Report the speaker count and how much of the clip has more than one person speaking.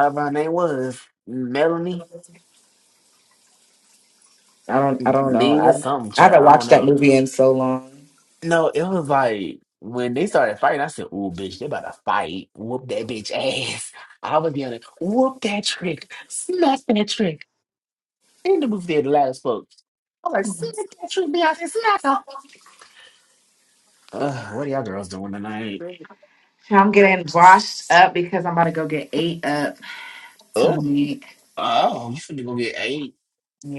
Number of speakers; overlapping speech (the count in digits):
2, about 6%